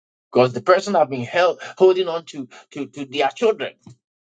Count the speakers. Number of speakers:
one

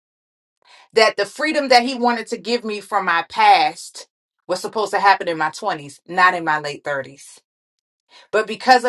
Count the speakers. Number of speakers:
one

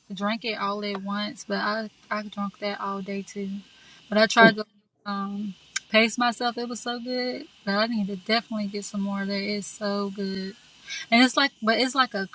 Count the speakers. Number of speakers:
one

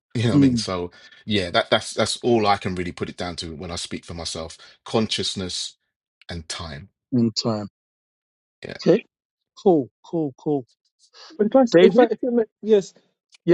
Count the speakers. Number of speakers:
three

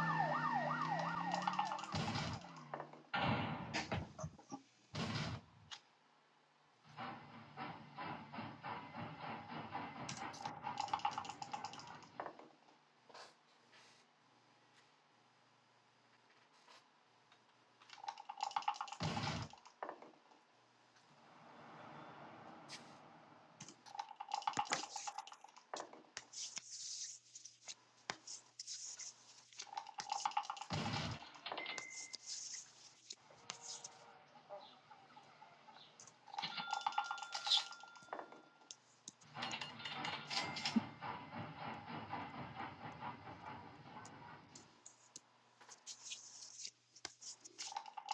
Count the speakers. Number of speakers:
zero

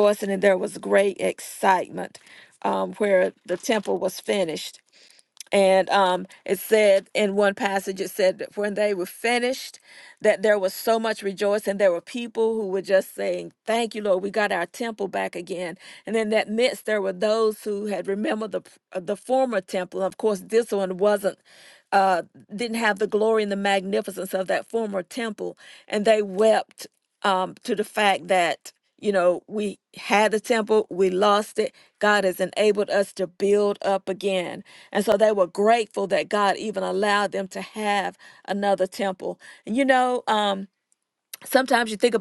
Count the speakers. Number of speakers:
one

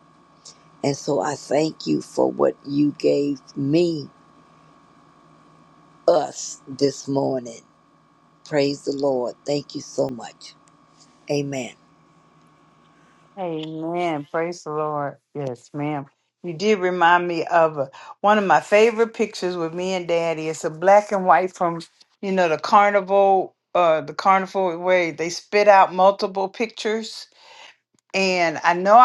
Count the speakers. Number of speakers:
two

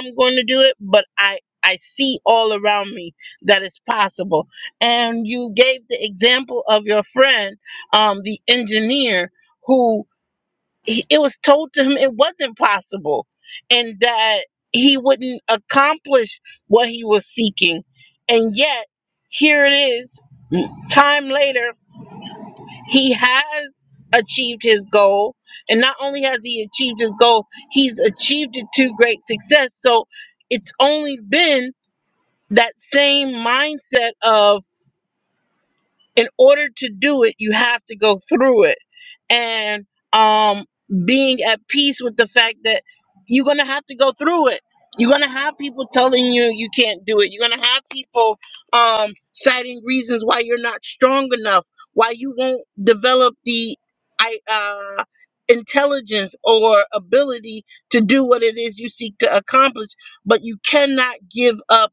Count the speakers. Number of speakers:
one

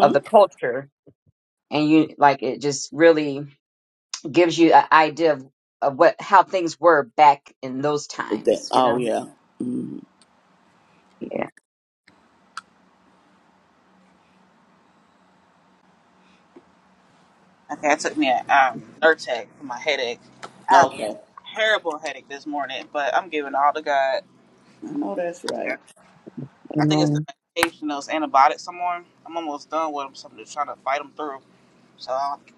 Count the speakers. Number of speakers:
three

